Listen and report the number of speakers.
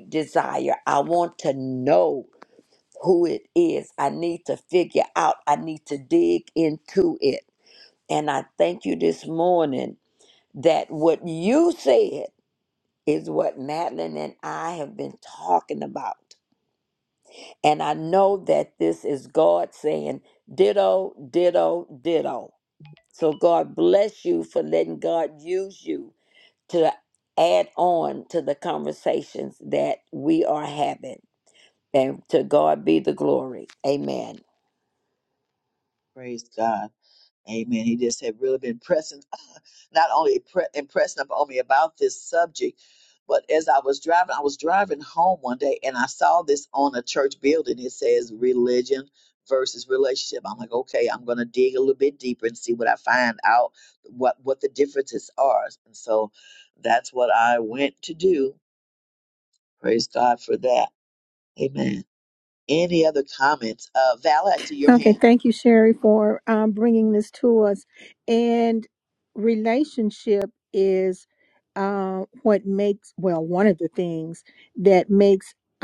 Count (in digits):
3